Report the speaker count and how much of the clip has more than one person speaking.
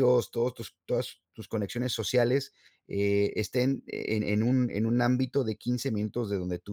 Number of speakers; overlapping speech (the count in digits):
1, no overlap